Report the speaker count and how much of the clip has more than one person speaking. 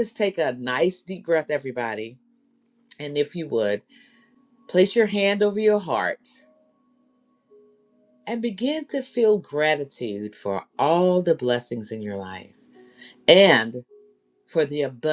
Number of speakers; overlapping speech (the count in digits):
1, no overlap